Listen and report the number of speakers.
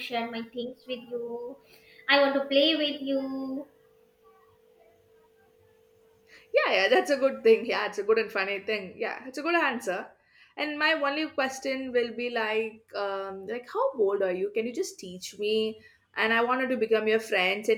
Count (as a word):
two